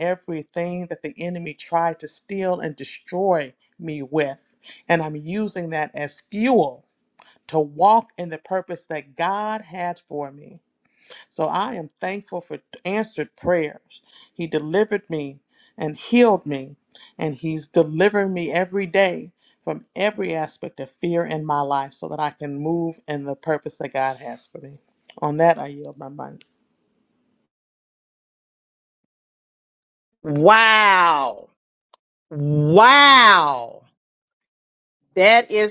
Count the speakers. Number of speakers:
2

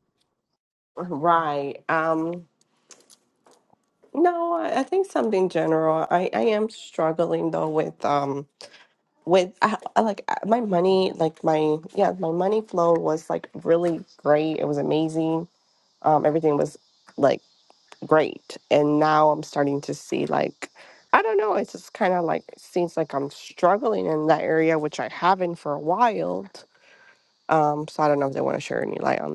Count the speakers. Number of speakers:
1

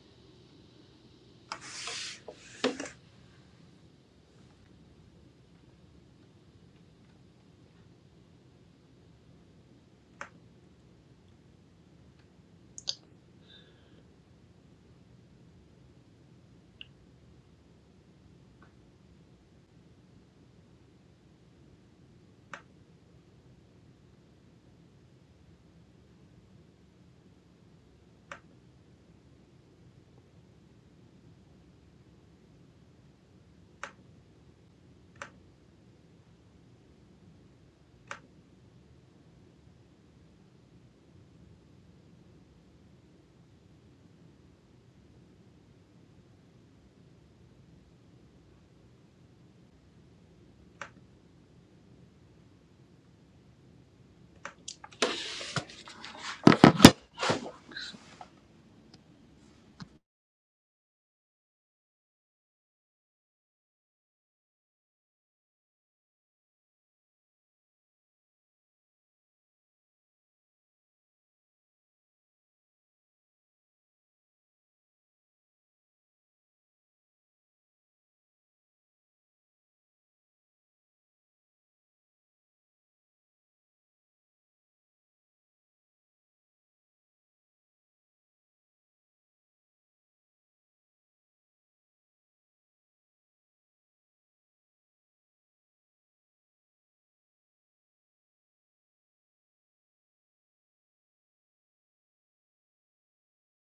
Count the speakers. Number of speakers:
0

